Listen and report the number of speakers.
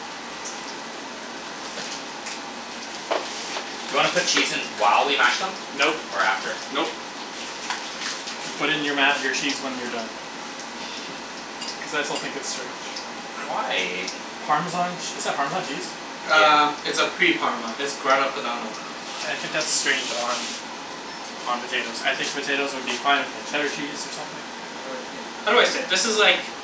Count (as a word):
three